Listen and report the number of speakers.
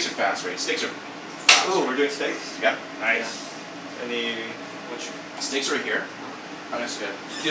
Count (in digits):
2